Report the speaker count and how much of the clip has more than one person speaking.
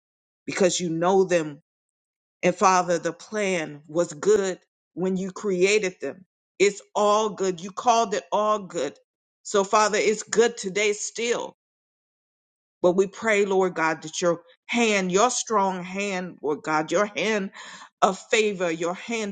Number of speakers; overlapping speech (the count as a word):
one, no overlap